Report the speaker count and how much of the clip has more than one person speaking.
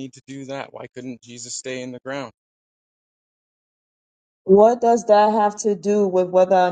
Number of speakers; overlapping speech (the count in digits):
2, no overlap